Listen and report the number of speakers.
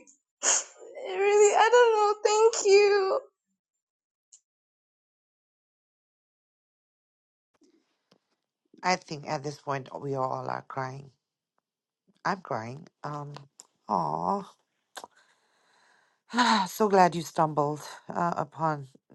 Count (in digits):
2